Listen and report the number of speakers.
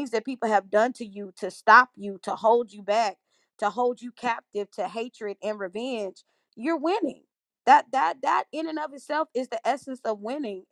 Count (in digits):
1